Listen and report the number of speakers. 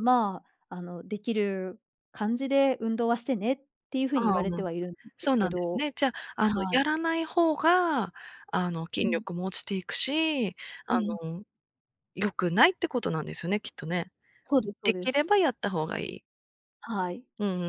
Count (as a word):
two